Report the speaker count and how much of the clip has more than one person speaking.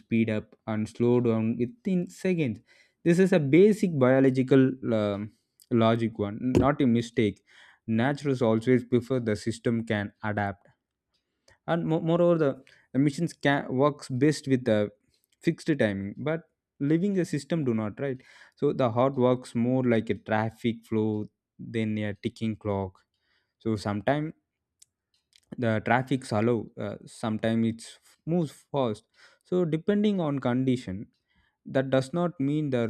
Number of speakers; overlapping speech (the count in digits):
1, no overlap